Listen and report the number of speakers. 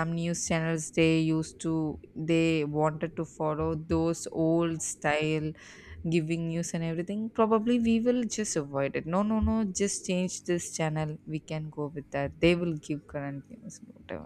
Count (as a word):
one